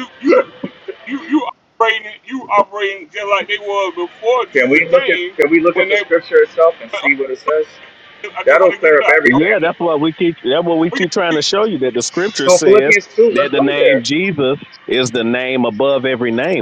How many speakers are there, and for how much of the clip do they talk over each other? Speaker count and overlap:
3, about 23%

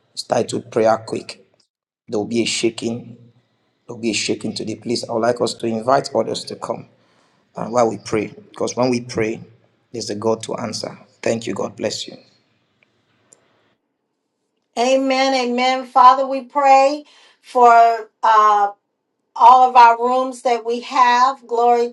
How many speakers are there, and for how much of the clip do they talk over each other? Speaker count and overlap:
2, no overlap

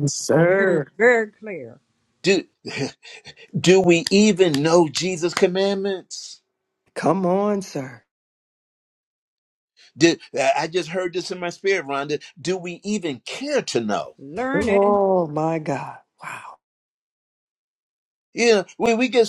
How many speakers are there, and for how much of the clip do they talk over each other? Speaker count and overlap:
3, about 4%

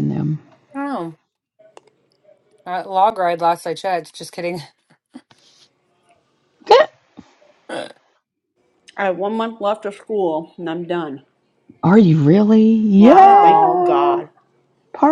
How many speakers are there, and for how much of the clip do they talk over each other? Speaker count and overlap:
3, about 6%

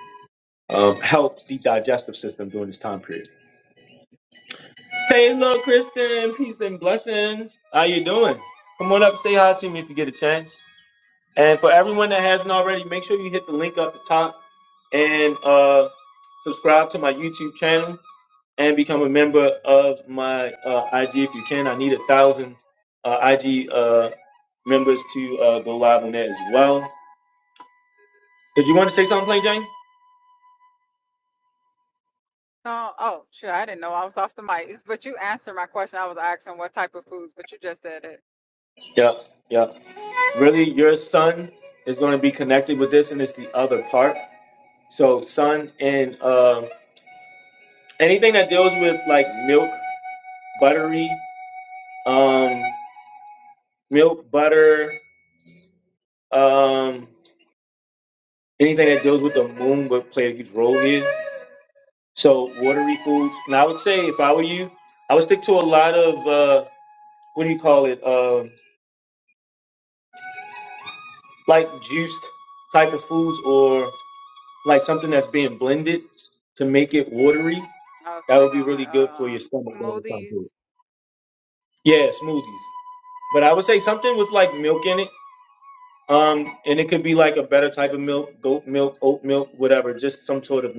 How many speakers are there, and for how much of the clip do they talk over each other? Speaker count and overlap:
2, about 2%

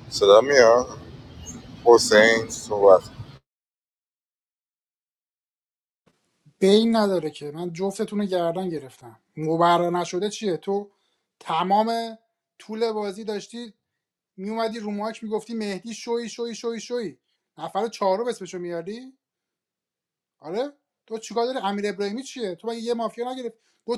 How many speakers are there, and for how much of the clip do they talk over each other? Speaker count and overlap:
2, no overlap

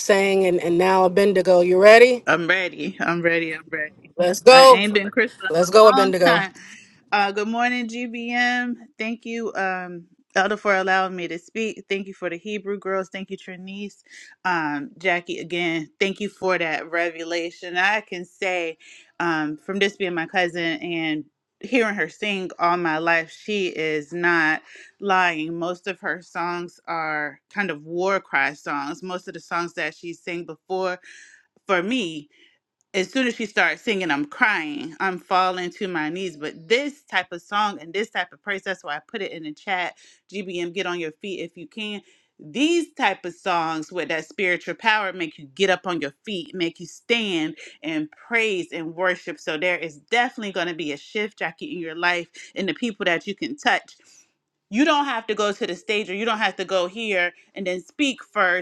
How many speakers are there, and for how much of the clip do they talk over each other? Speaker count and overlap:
2, about 2%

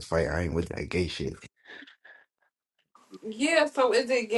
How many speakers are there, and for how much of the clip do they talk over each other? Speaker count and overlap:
2, no overlap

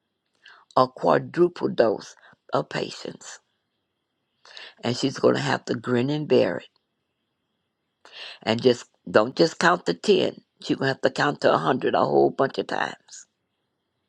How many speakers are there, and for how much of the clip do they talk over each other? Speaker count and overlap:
1, no overlap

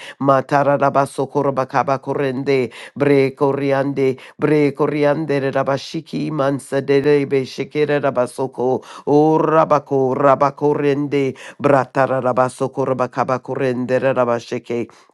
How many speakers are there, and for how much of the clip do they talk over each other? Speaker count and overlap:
1, no overlap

